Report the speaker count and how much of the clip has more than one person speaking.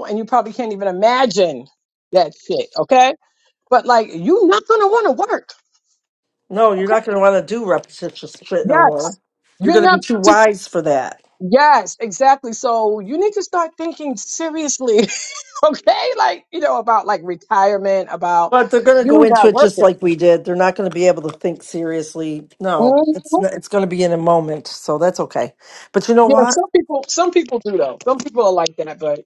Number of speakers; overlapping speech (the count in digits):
2, about 10%